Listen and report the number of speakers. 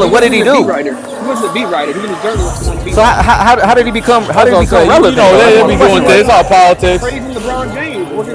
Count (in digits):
3